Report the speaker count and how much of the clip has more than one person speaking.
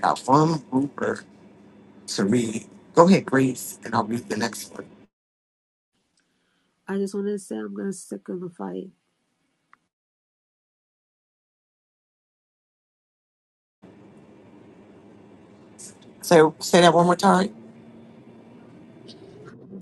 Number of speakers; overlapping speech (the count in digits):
2, no overlap